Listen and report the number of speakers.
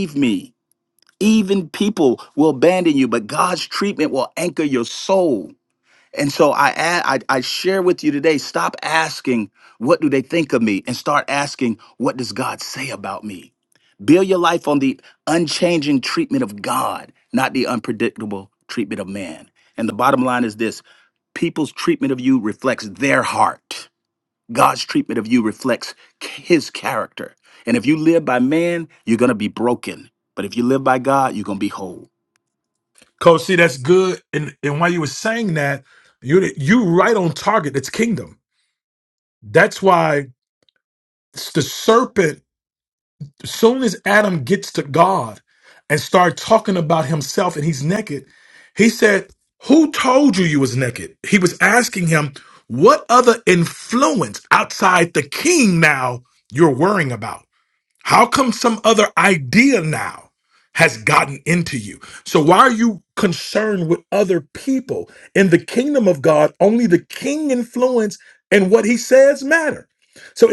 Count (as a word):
two